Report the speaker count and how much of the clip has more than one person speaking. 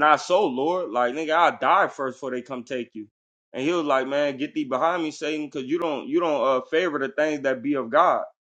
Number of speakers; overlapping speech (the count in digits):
1, no overlap